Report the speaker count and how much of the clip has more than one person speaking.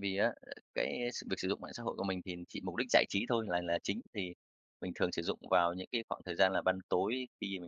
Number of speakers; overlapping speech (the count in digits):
1, no overlap